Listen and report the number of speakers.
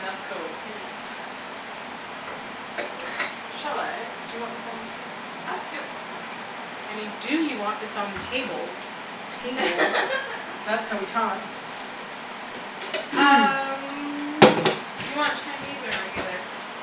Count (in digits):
2